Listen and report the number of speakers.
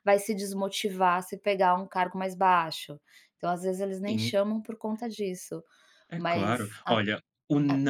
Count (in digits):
2